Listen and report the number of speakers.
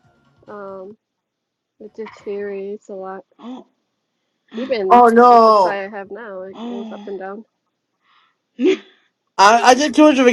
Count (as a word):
three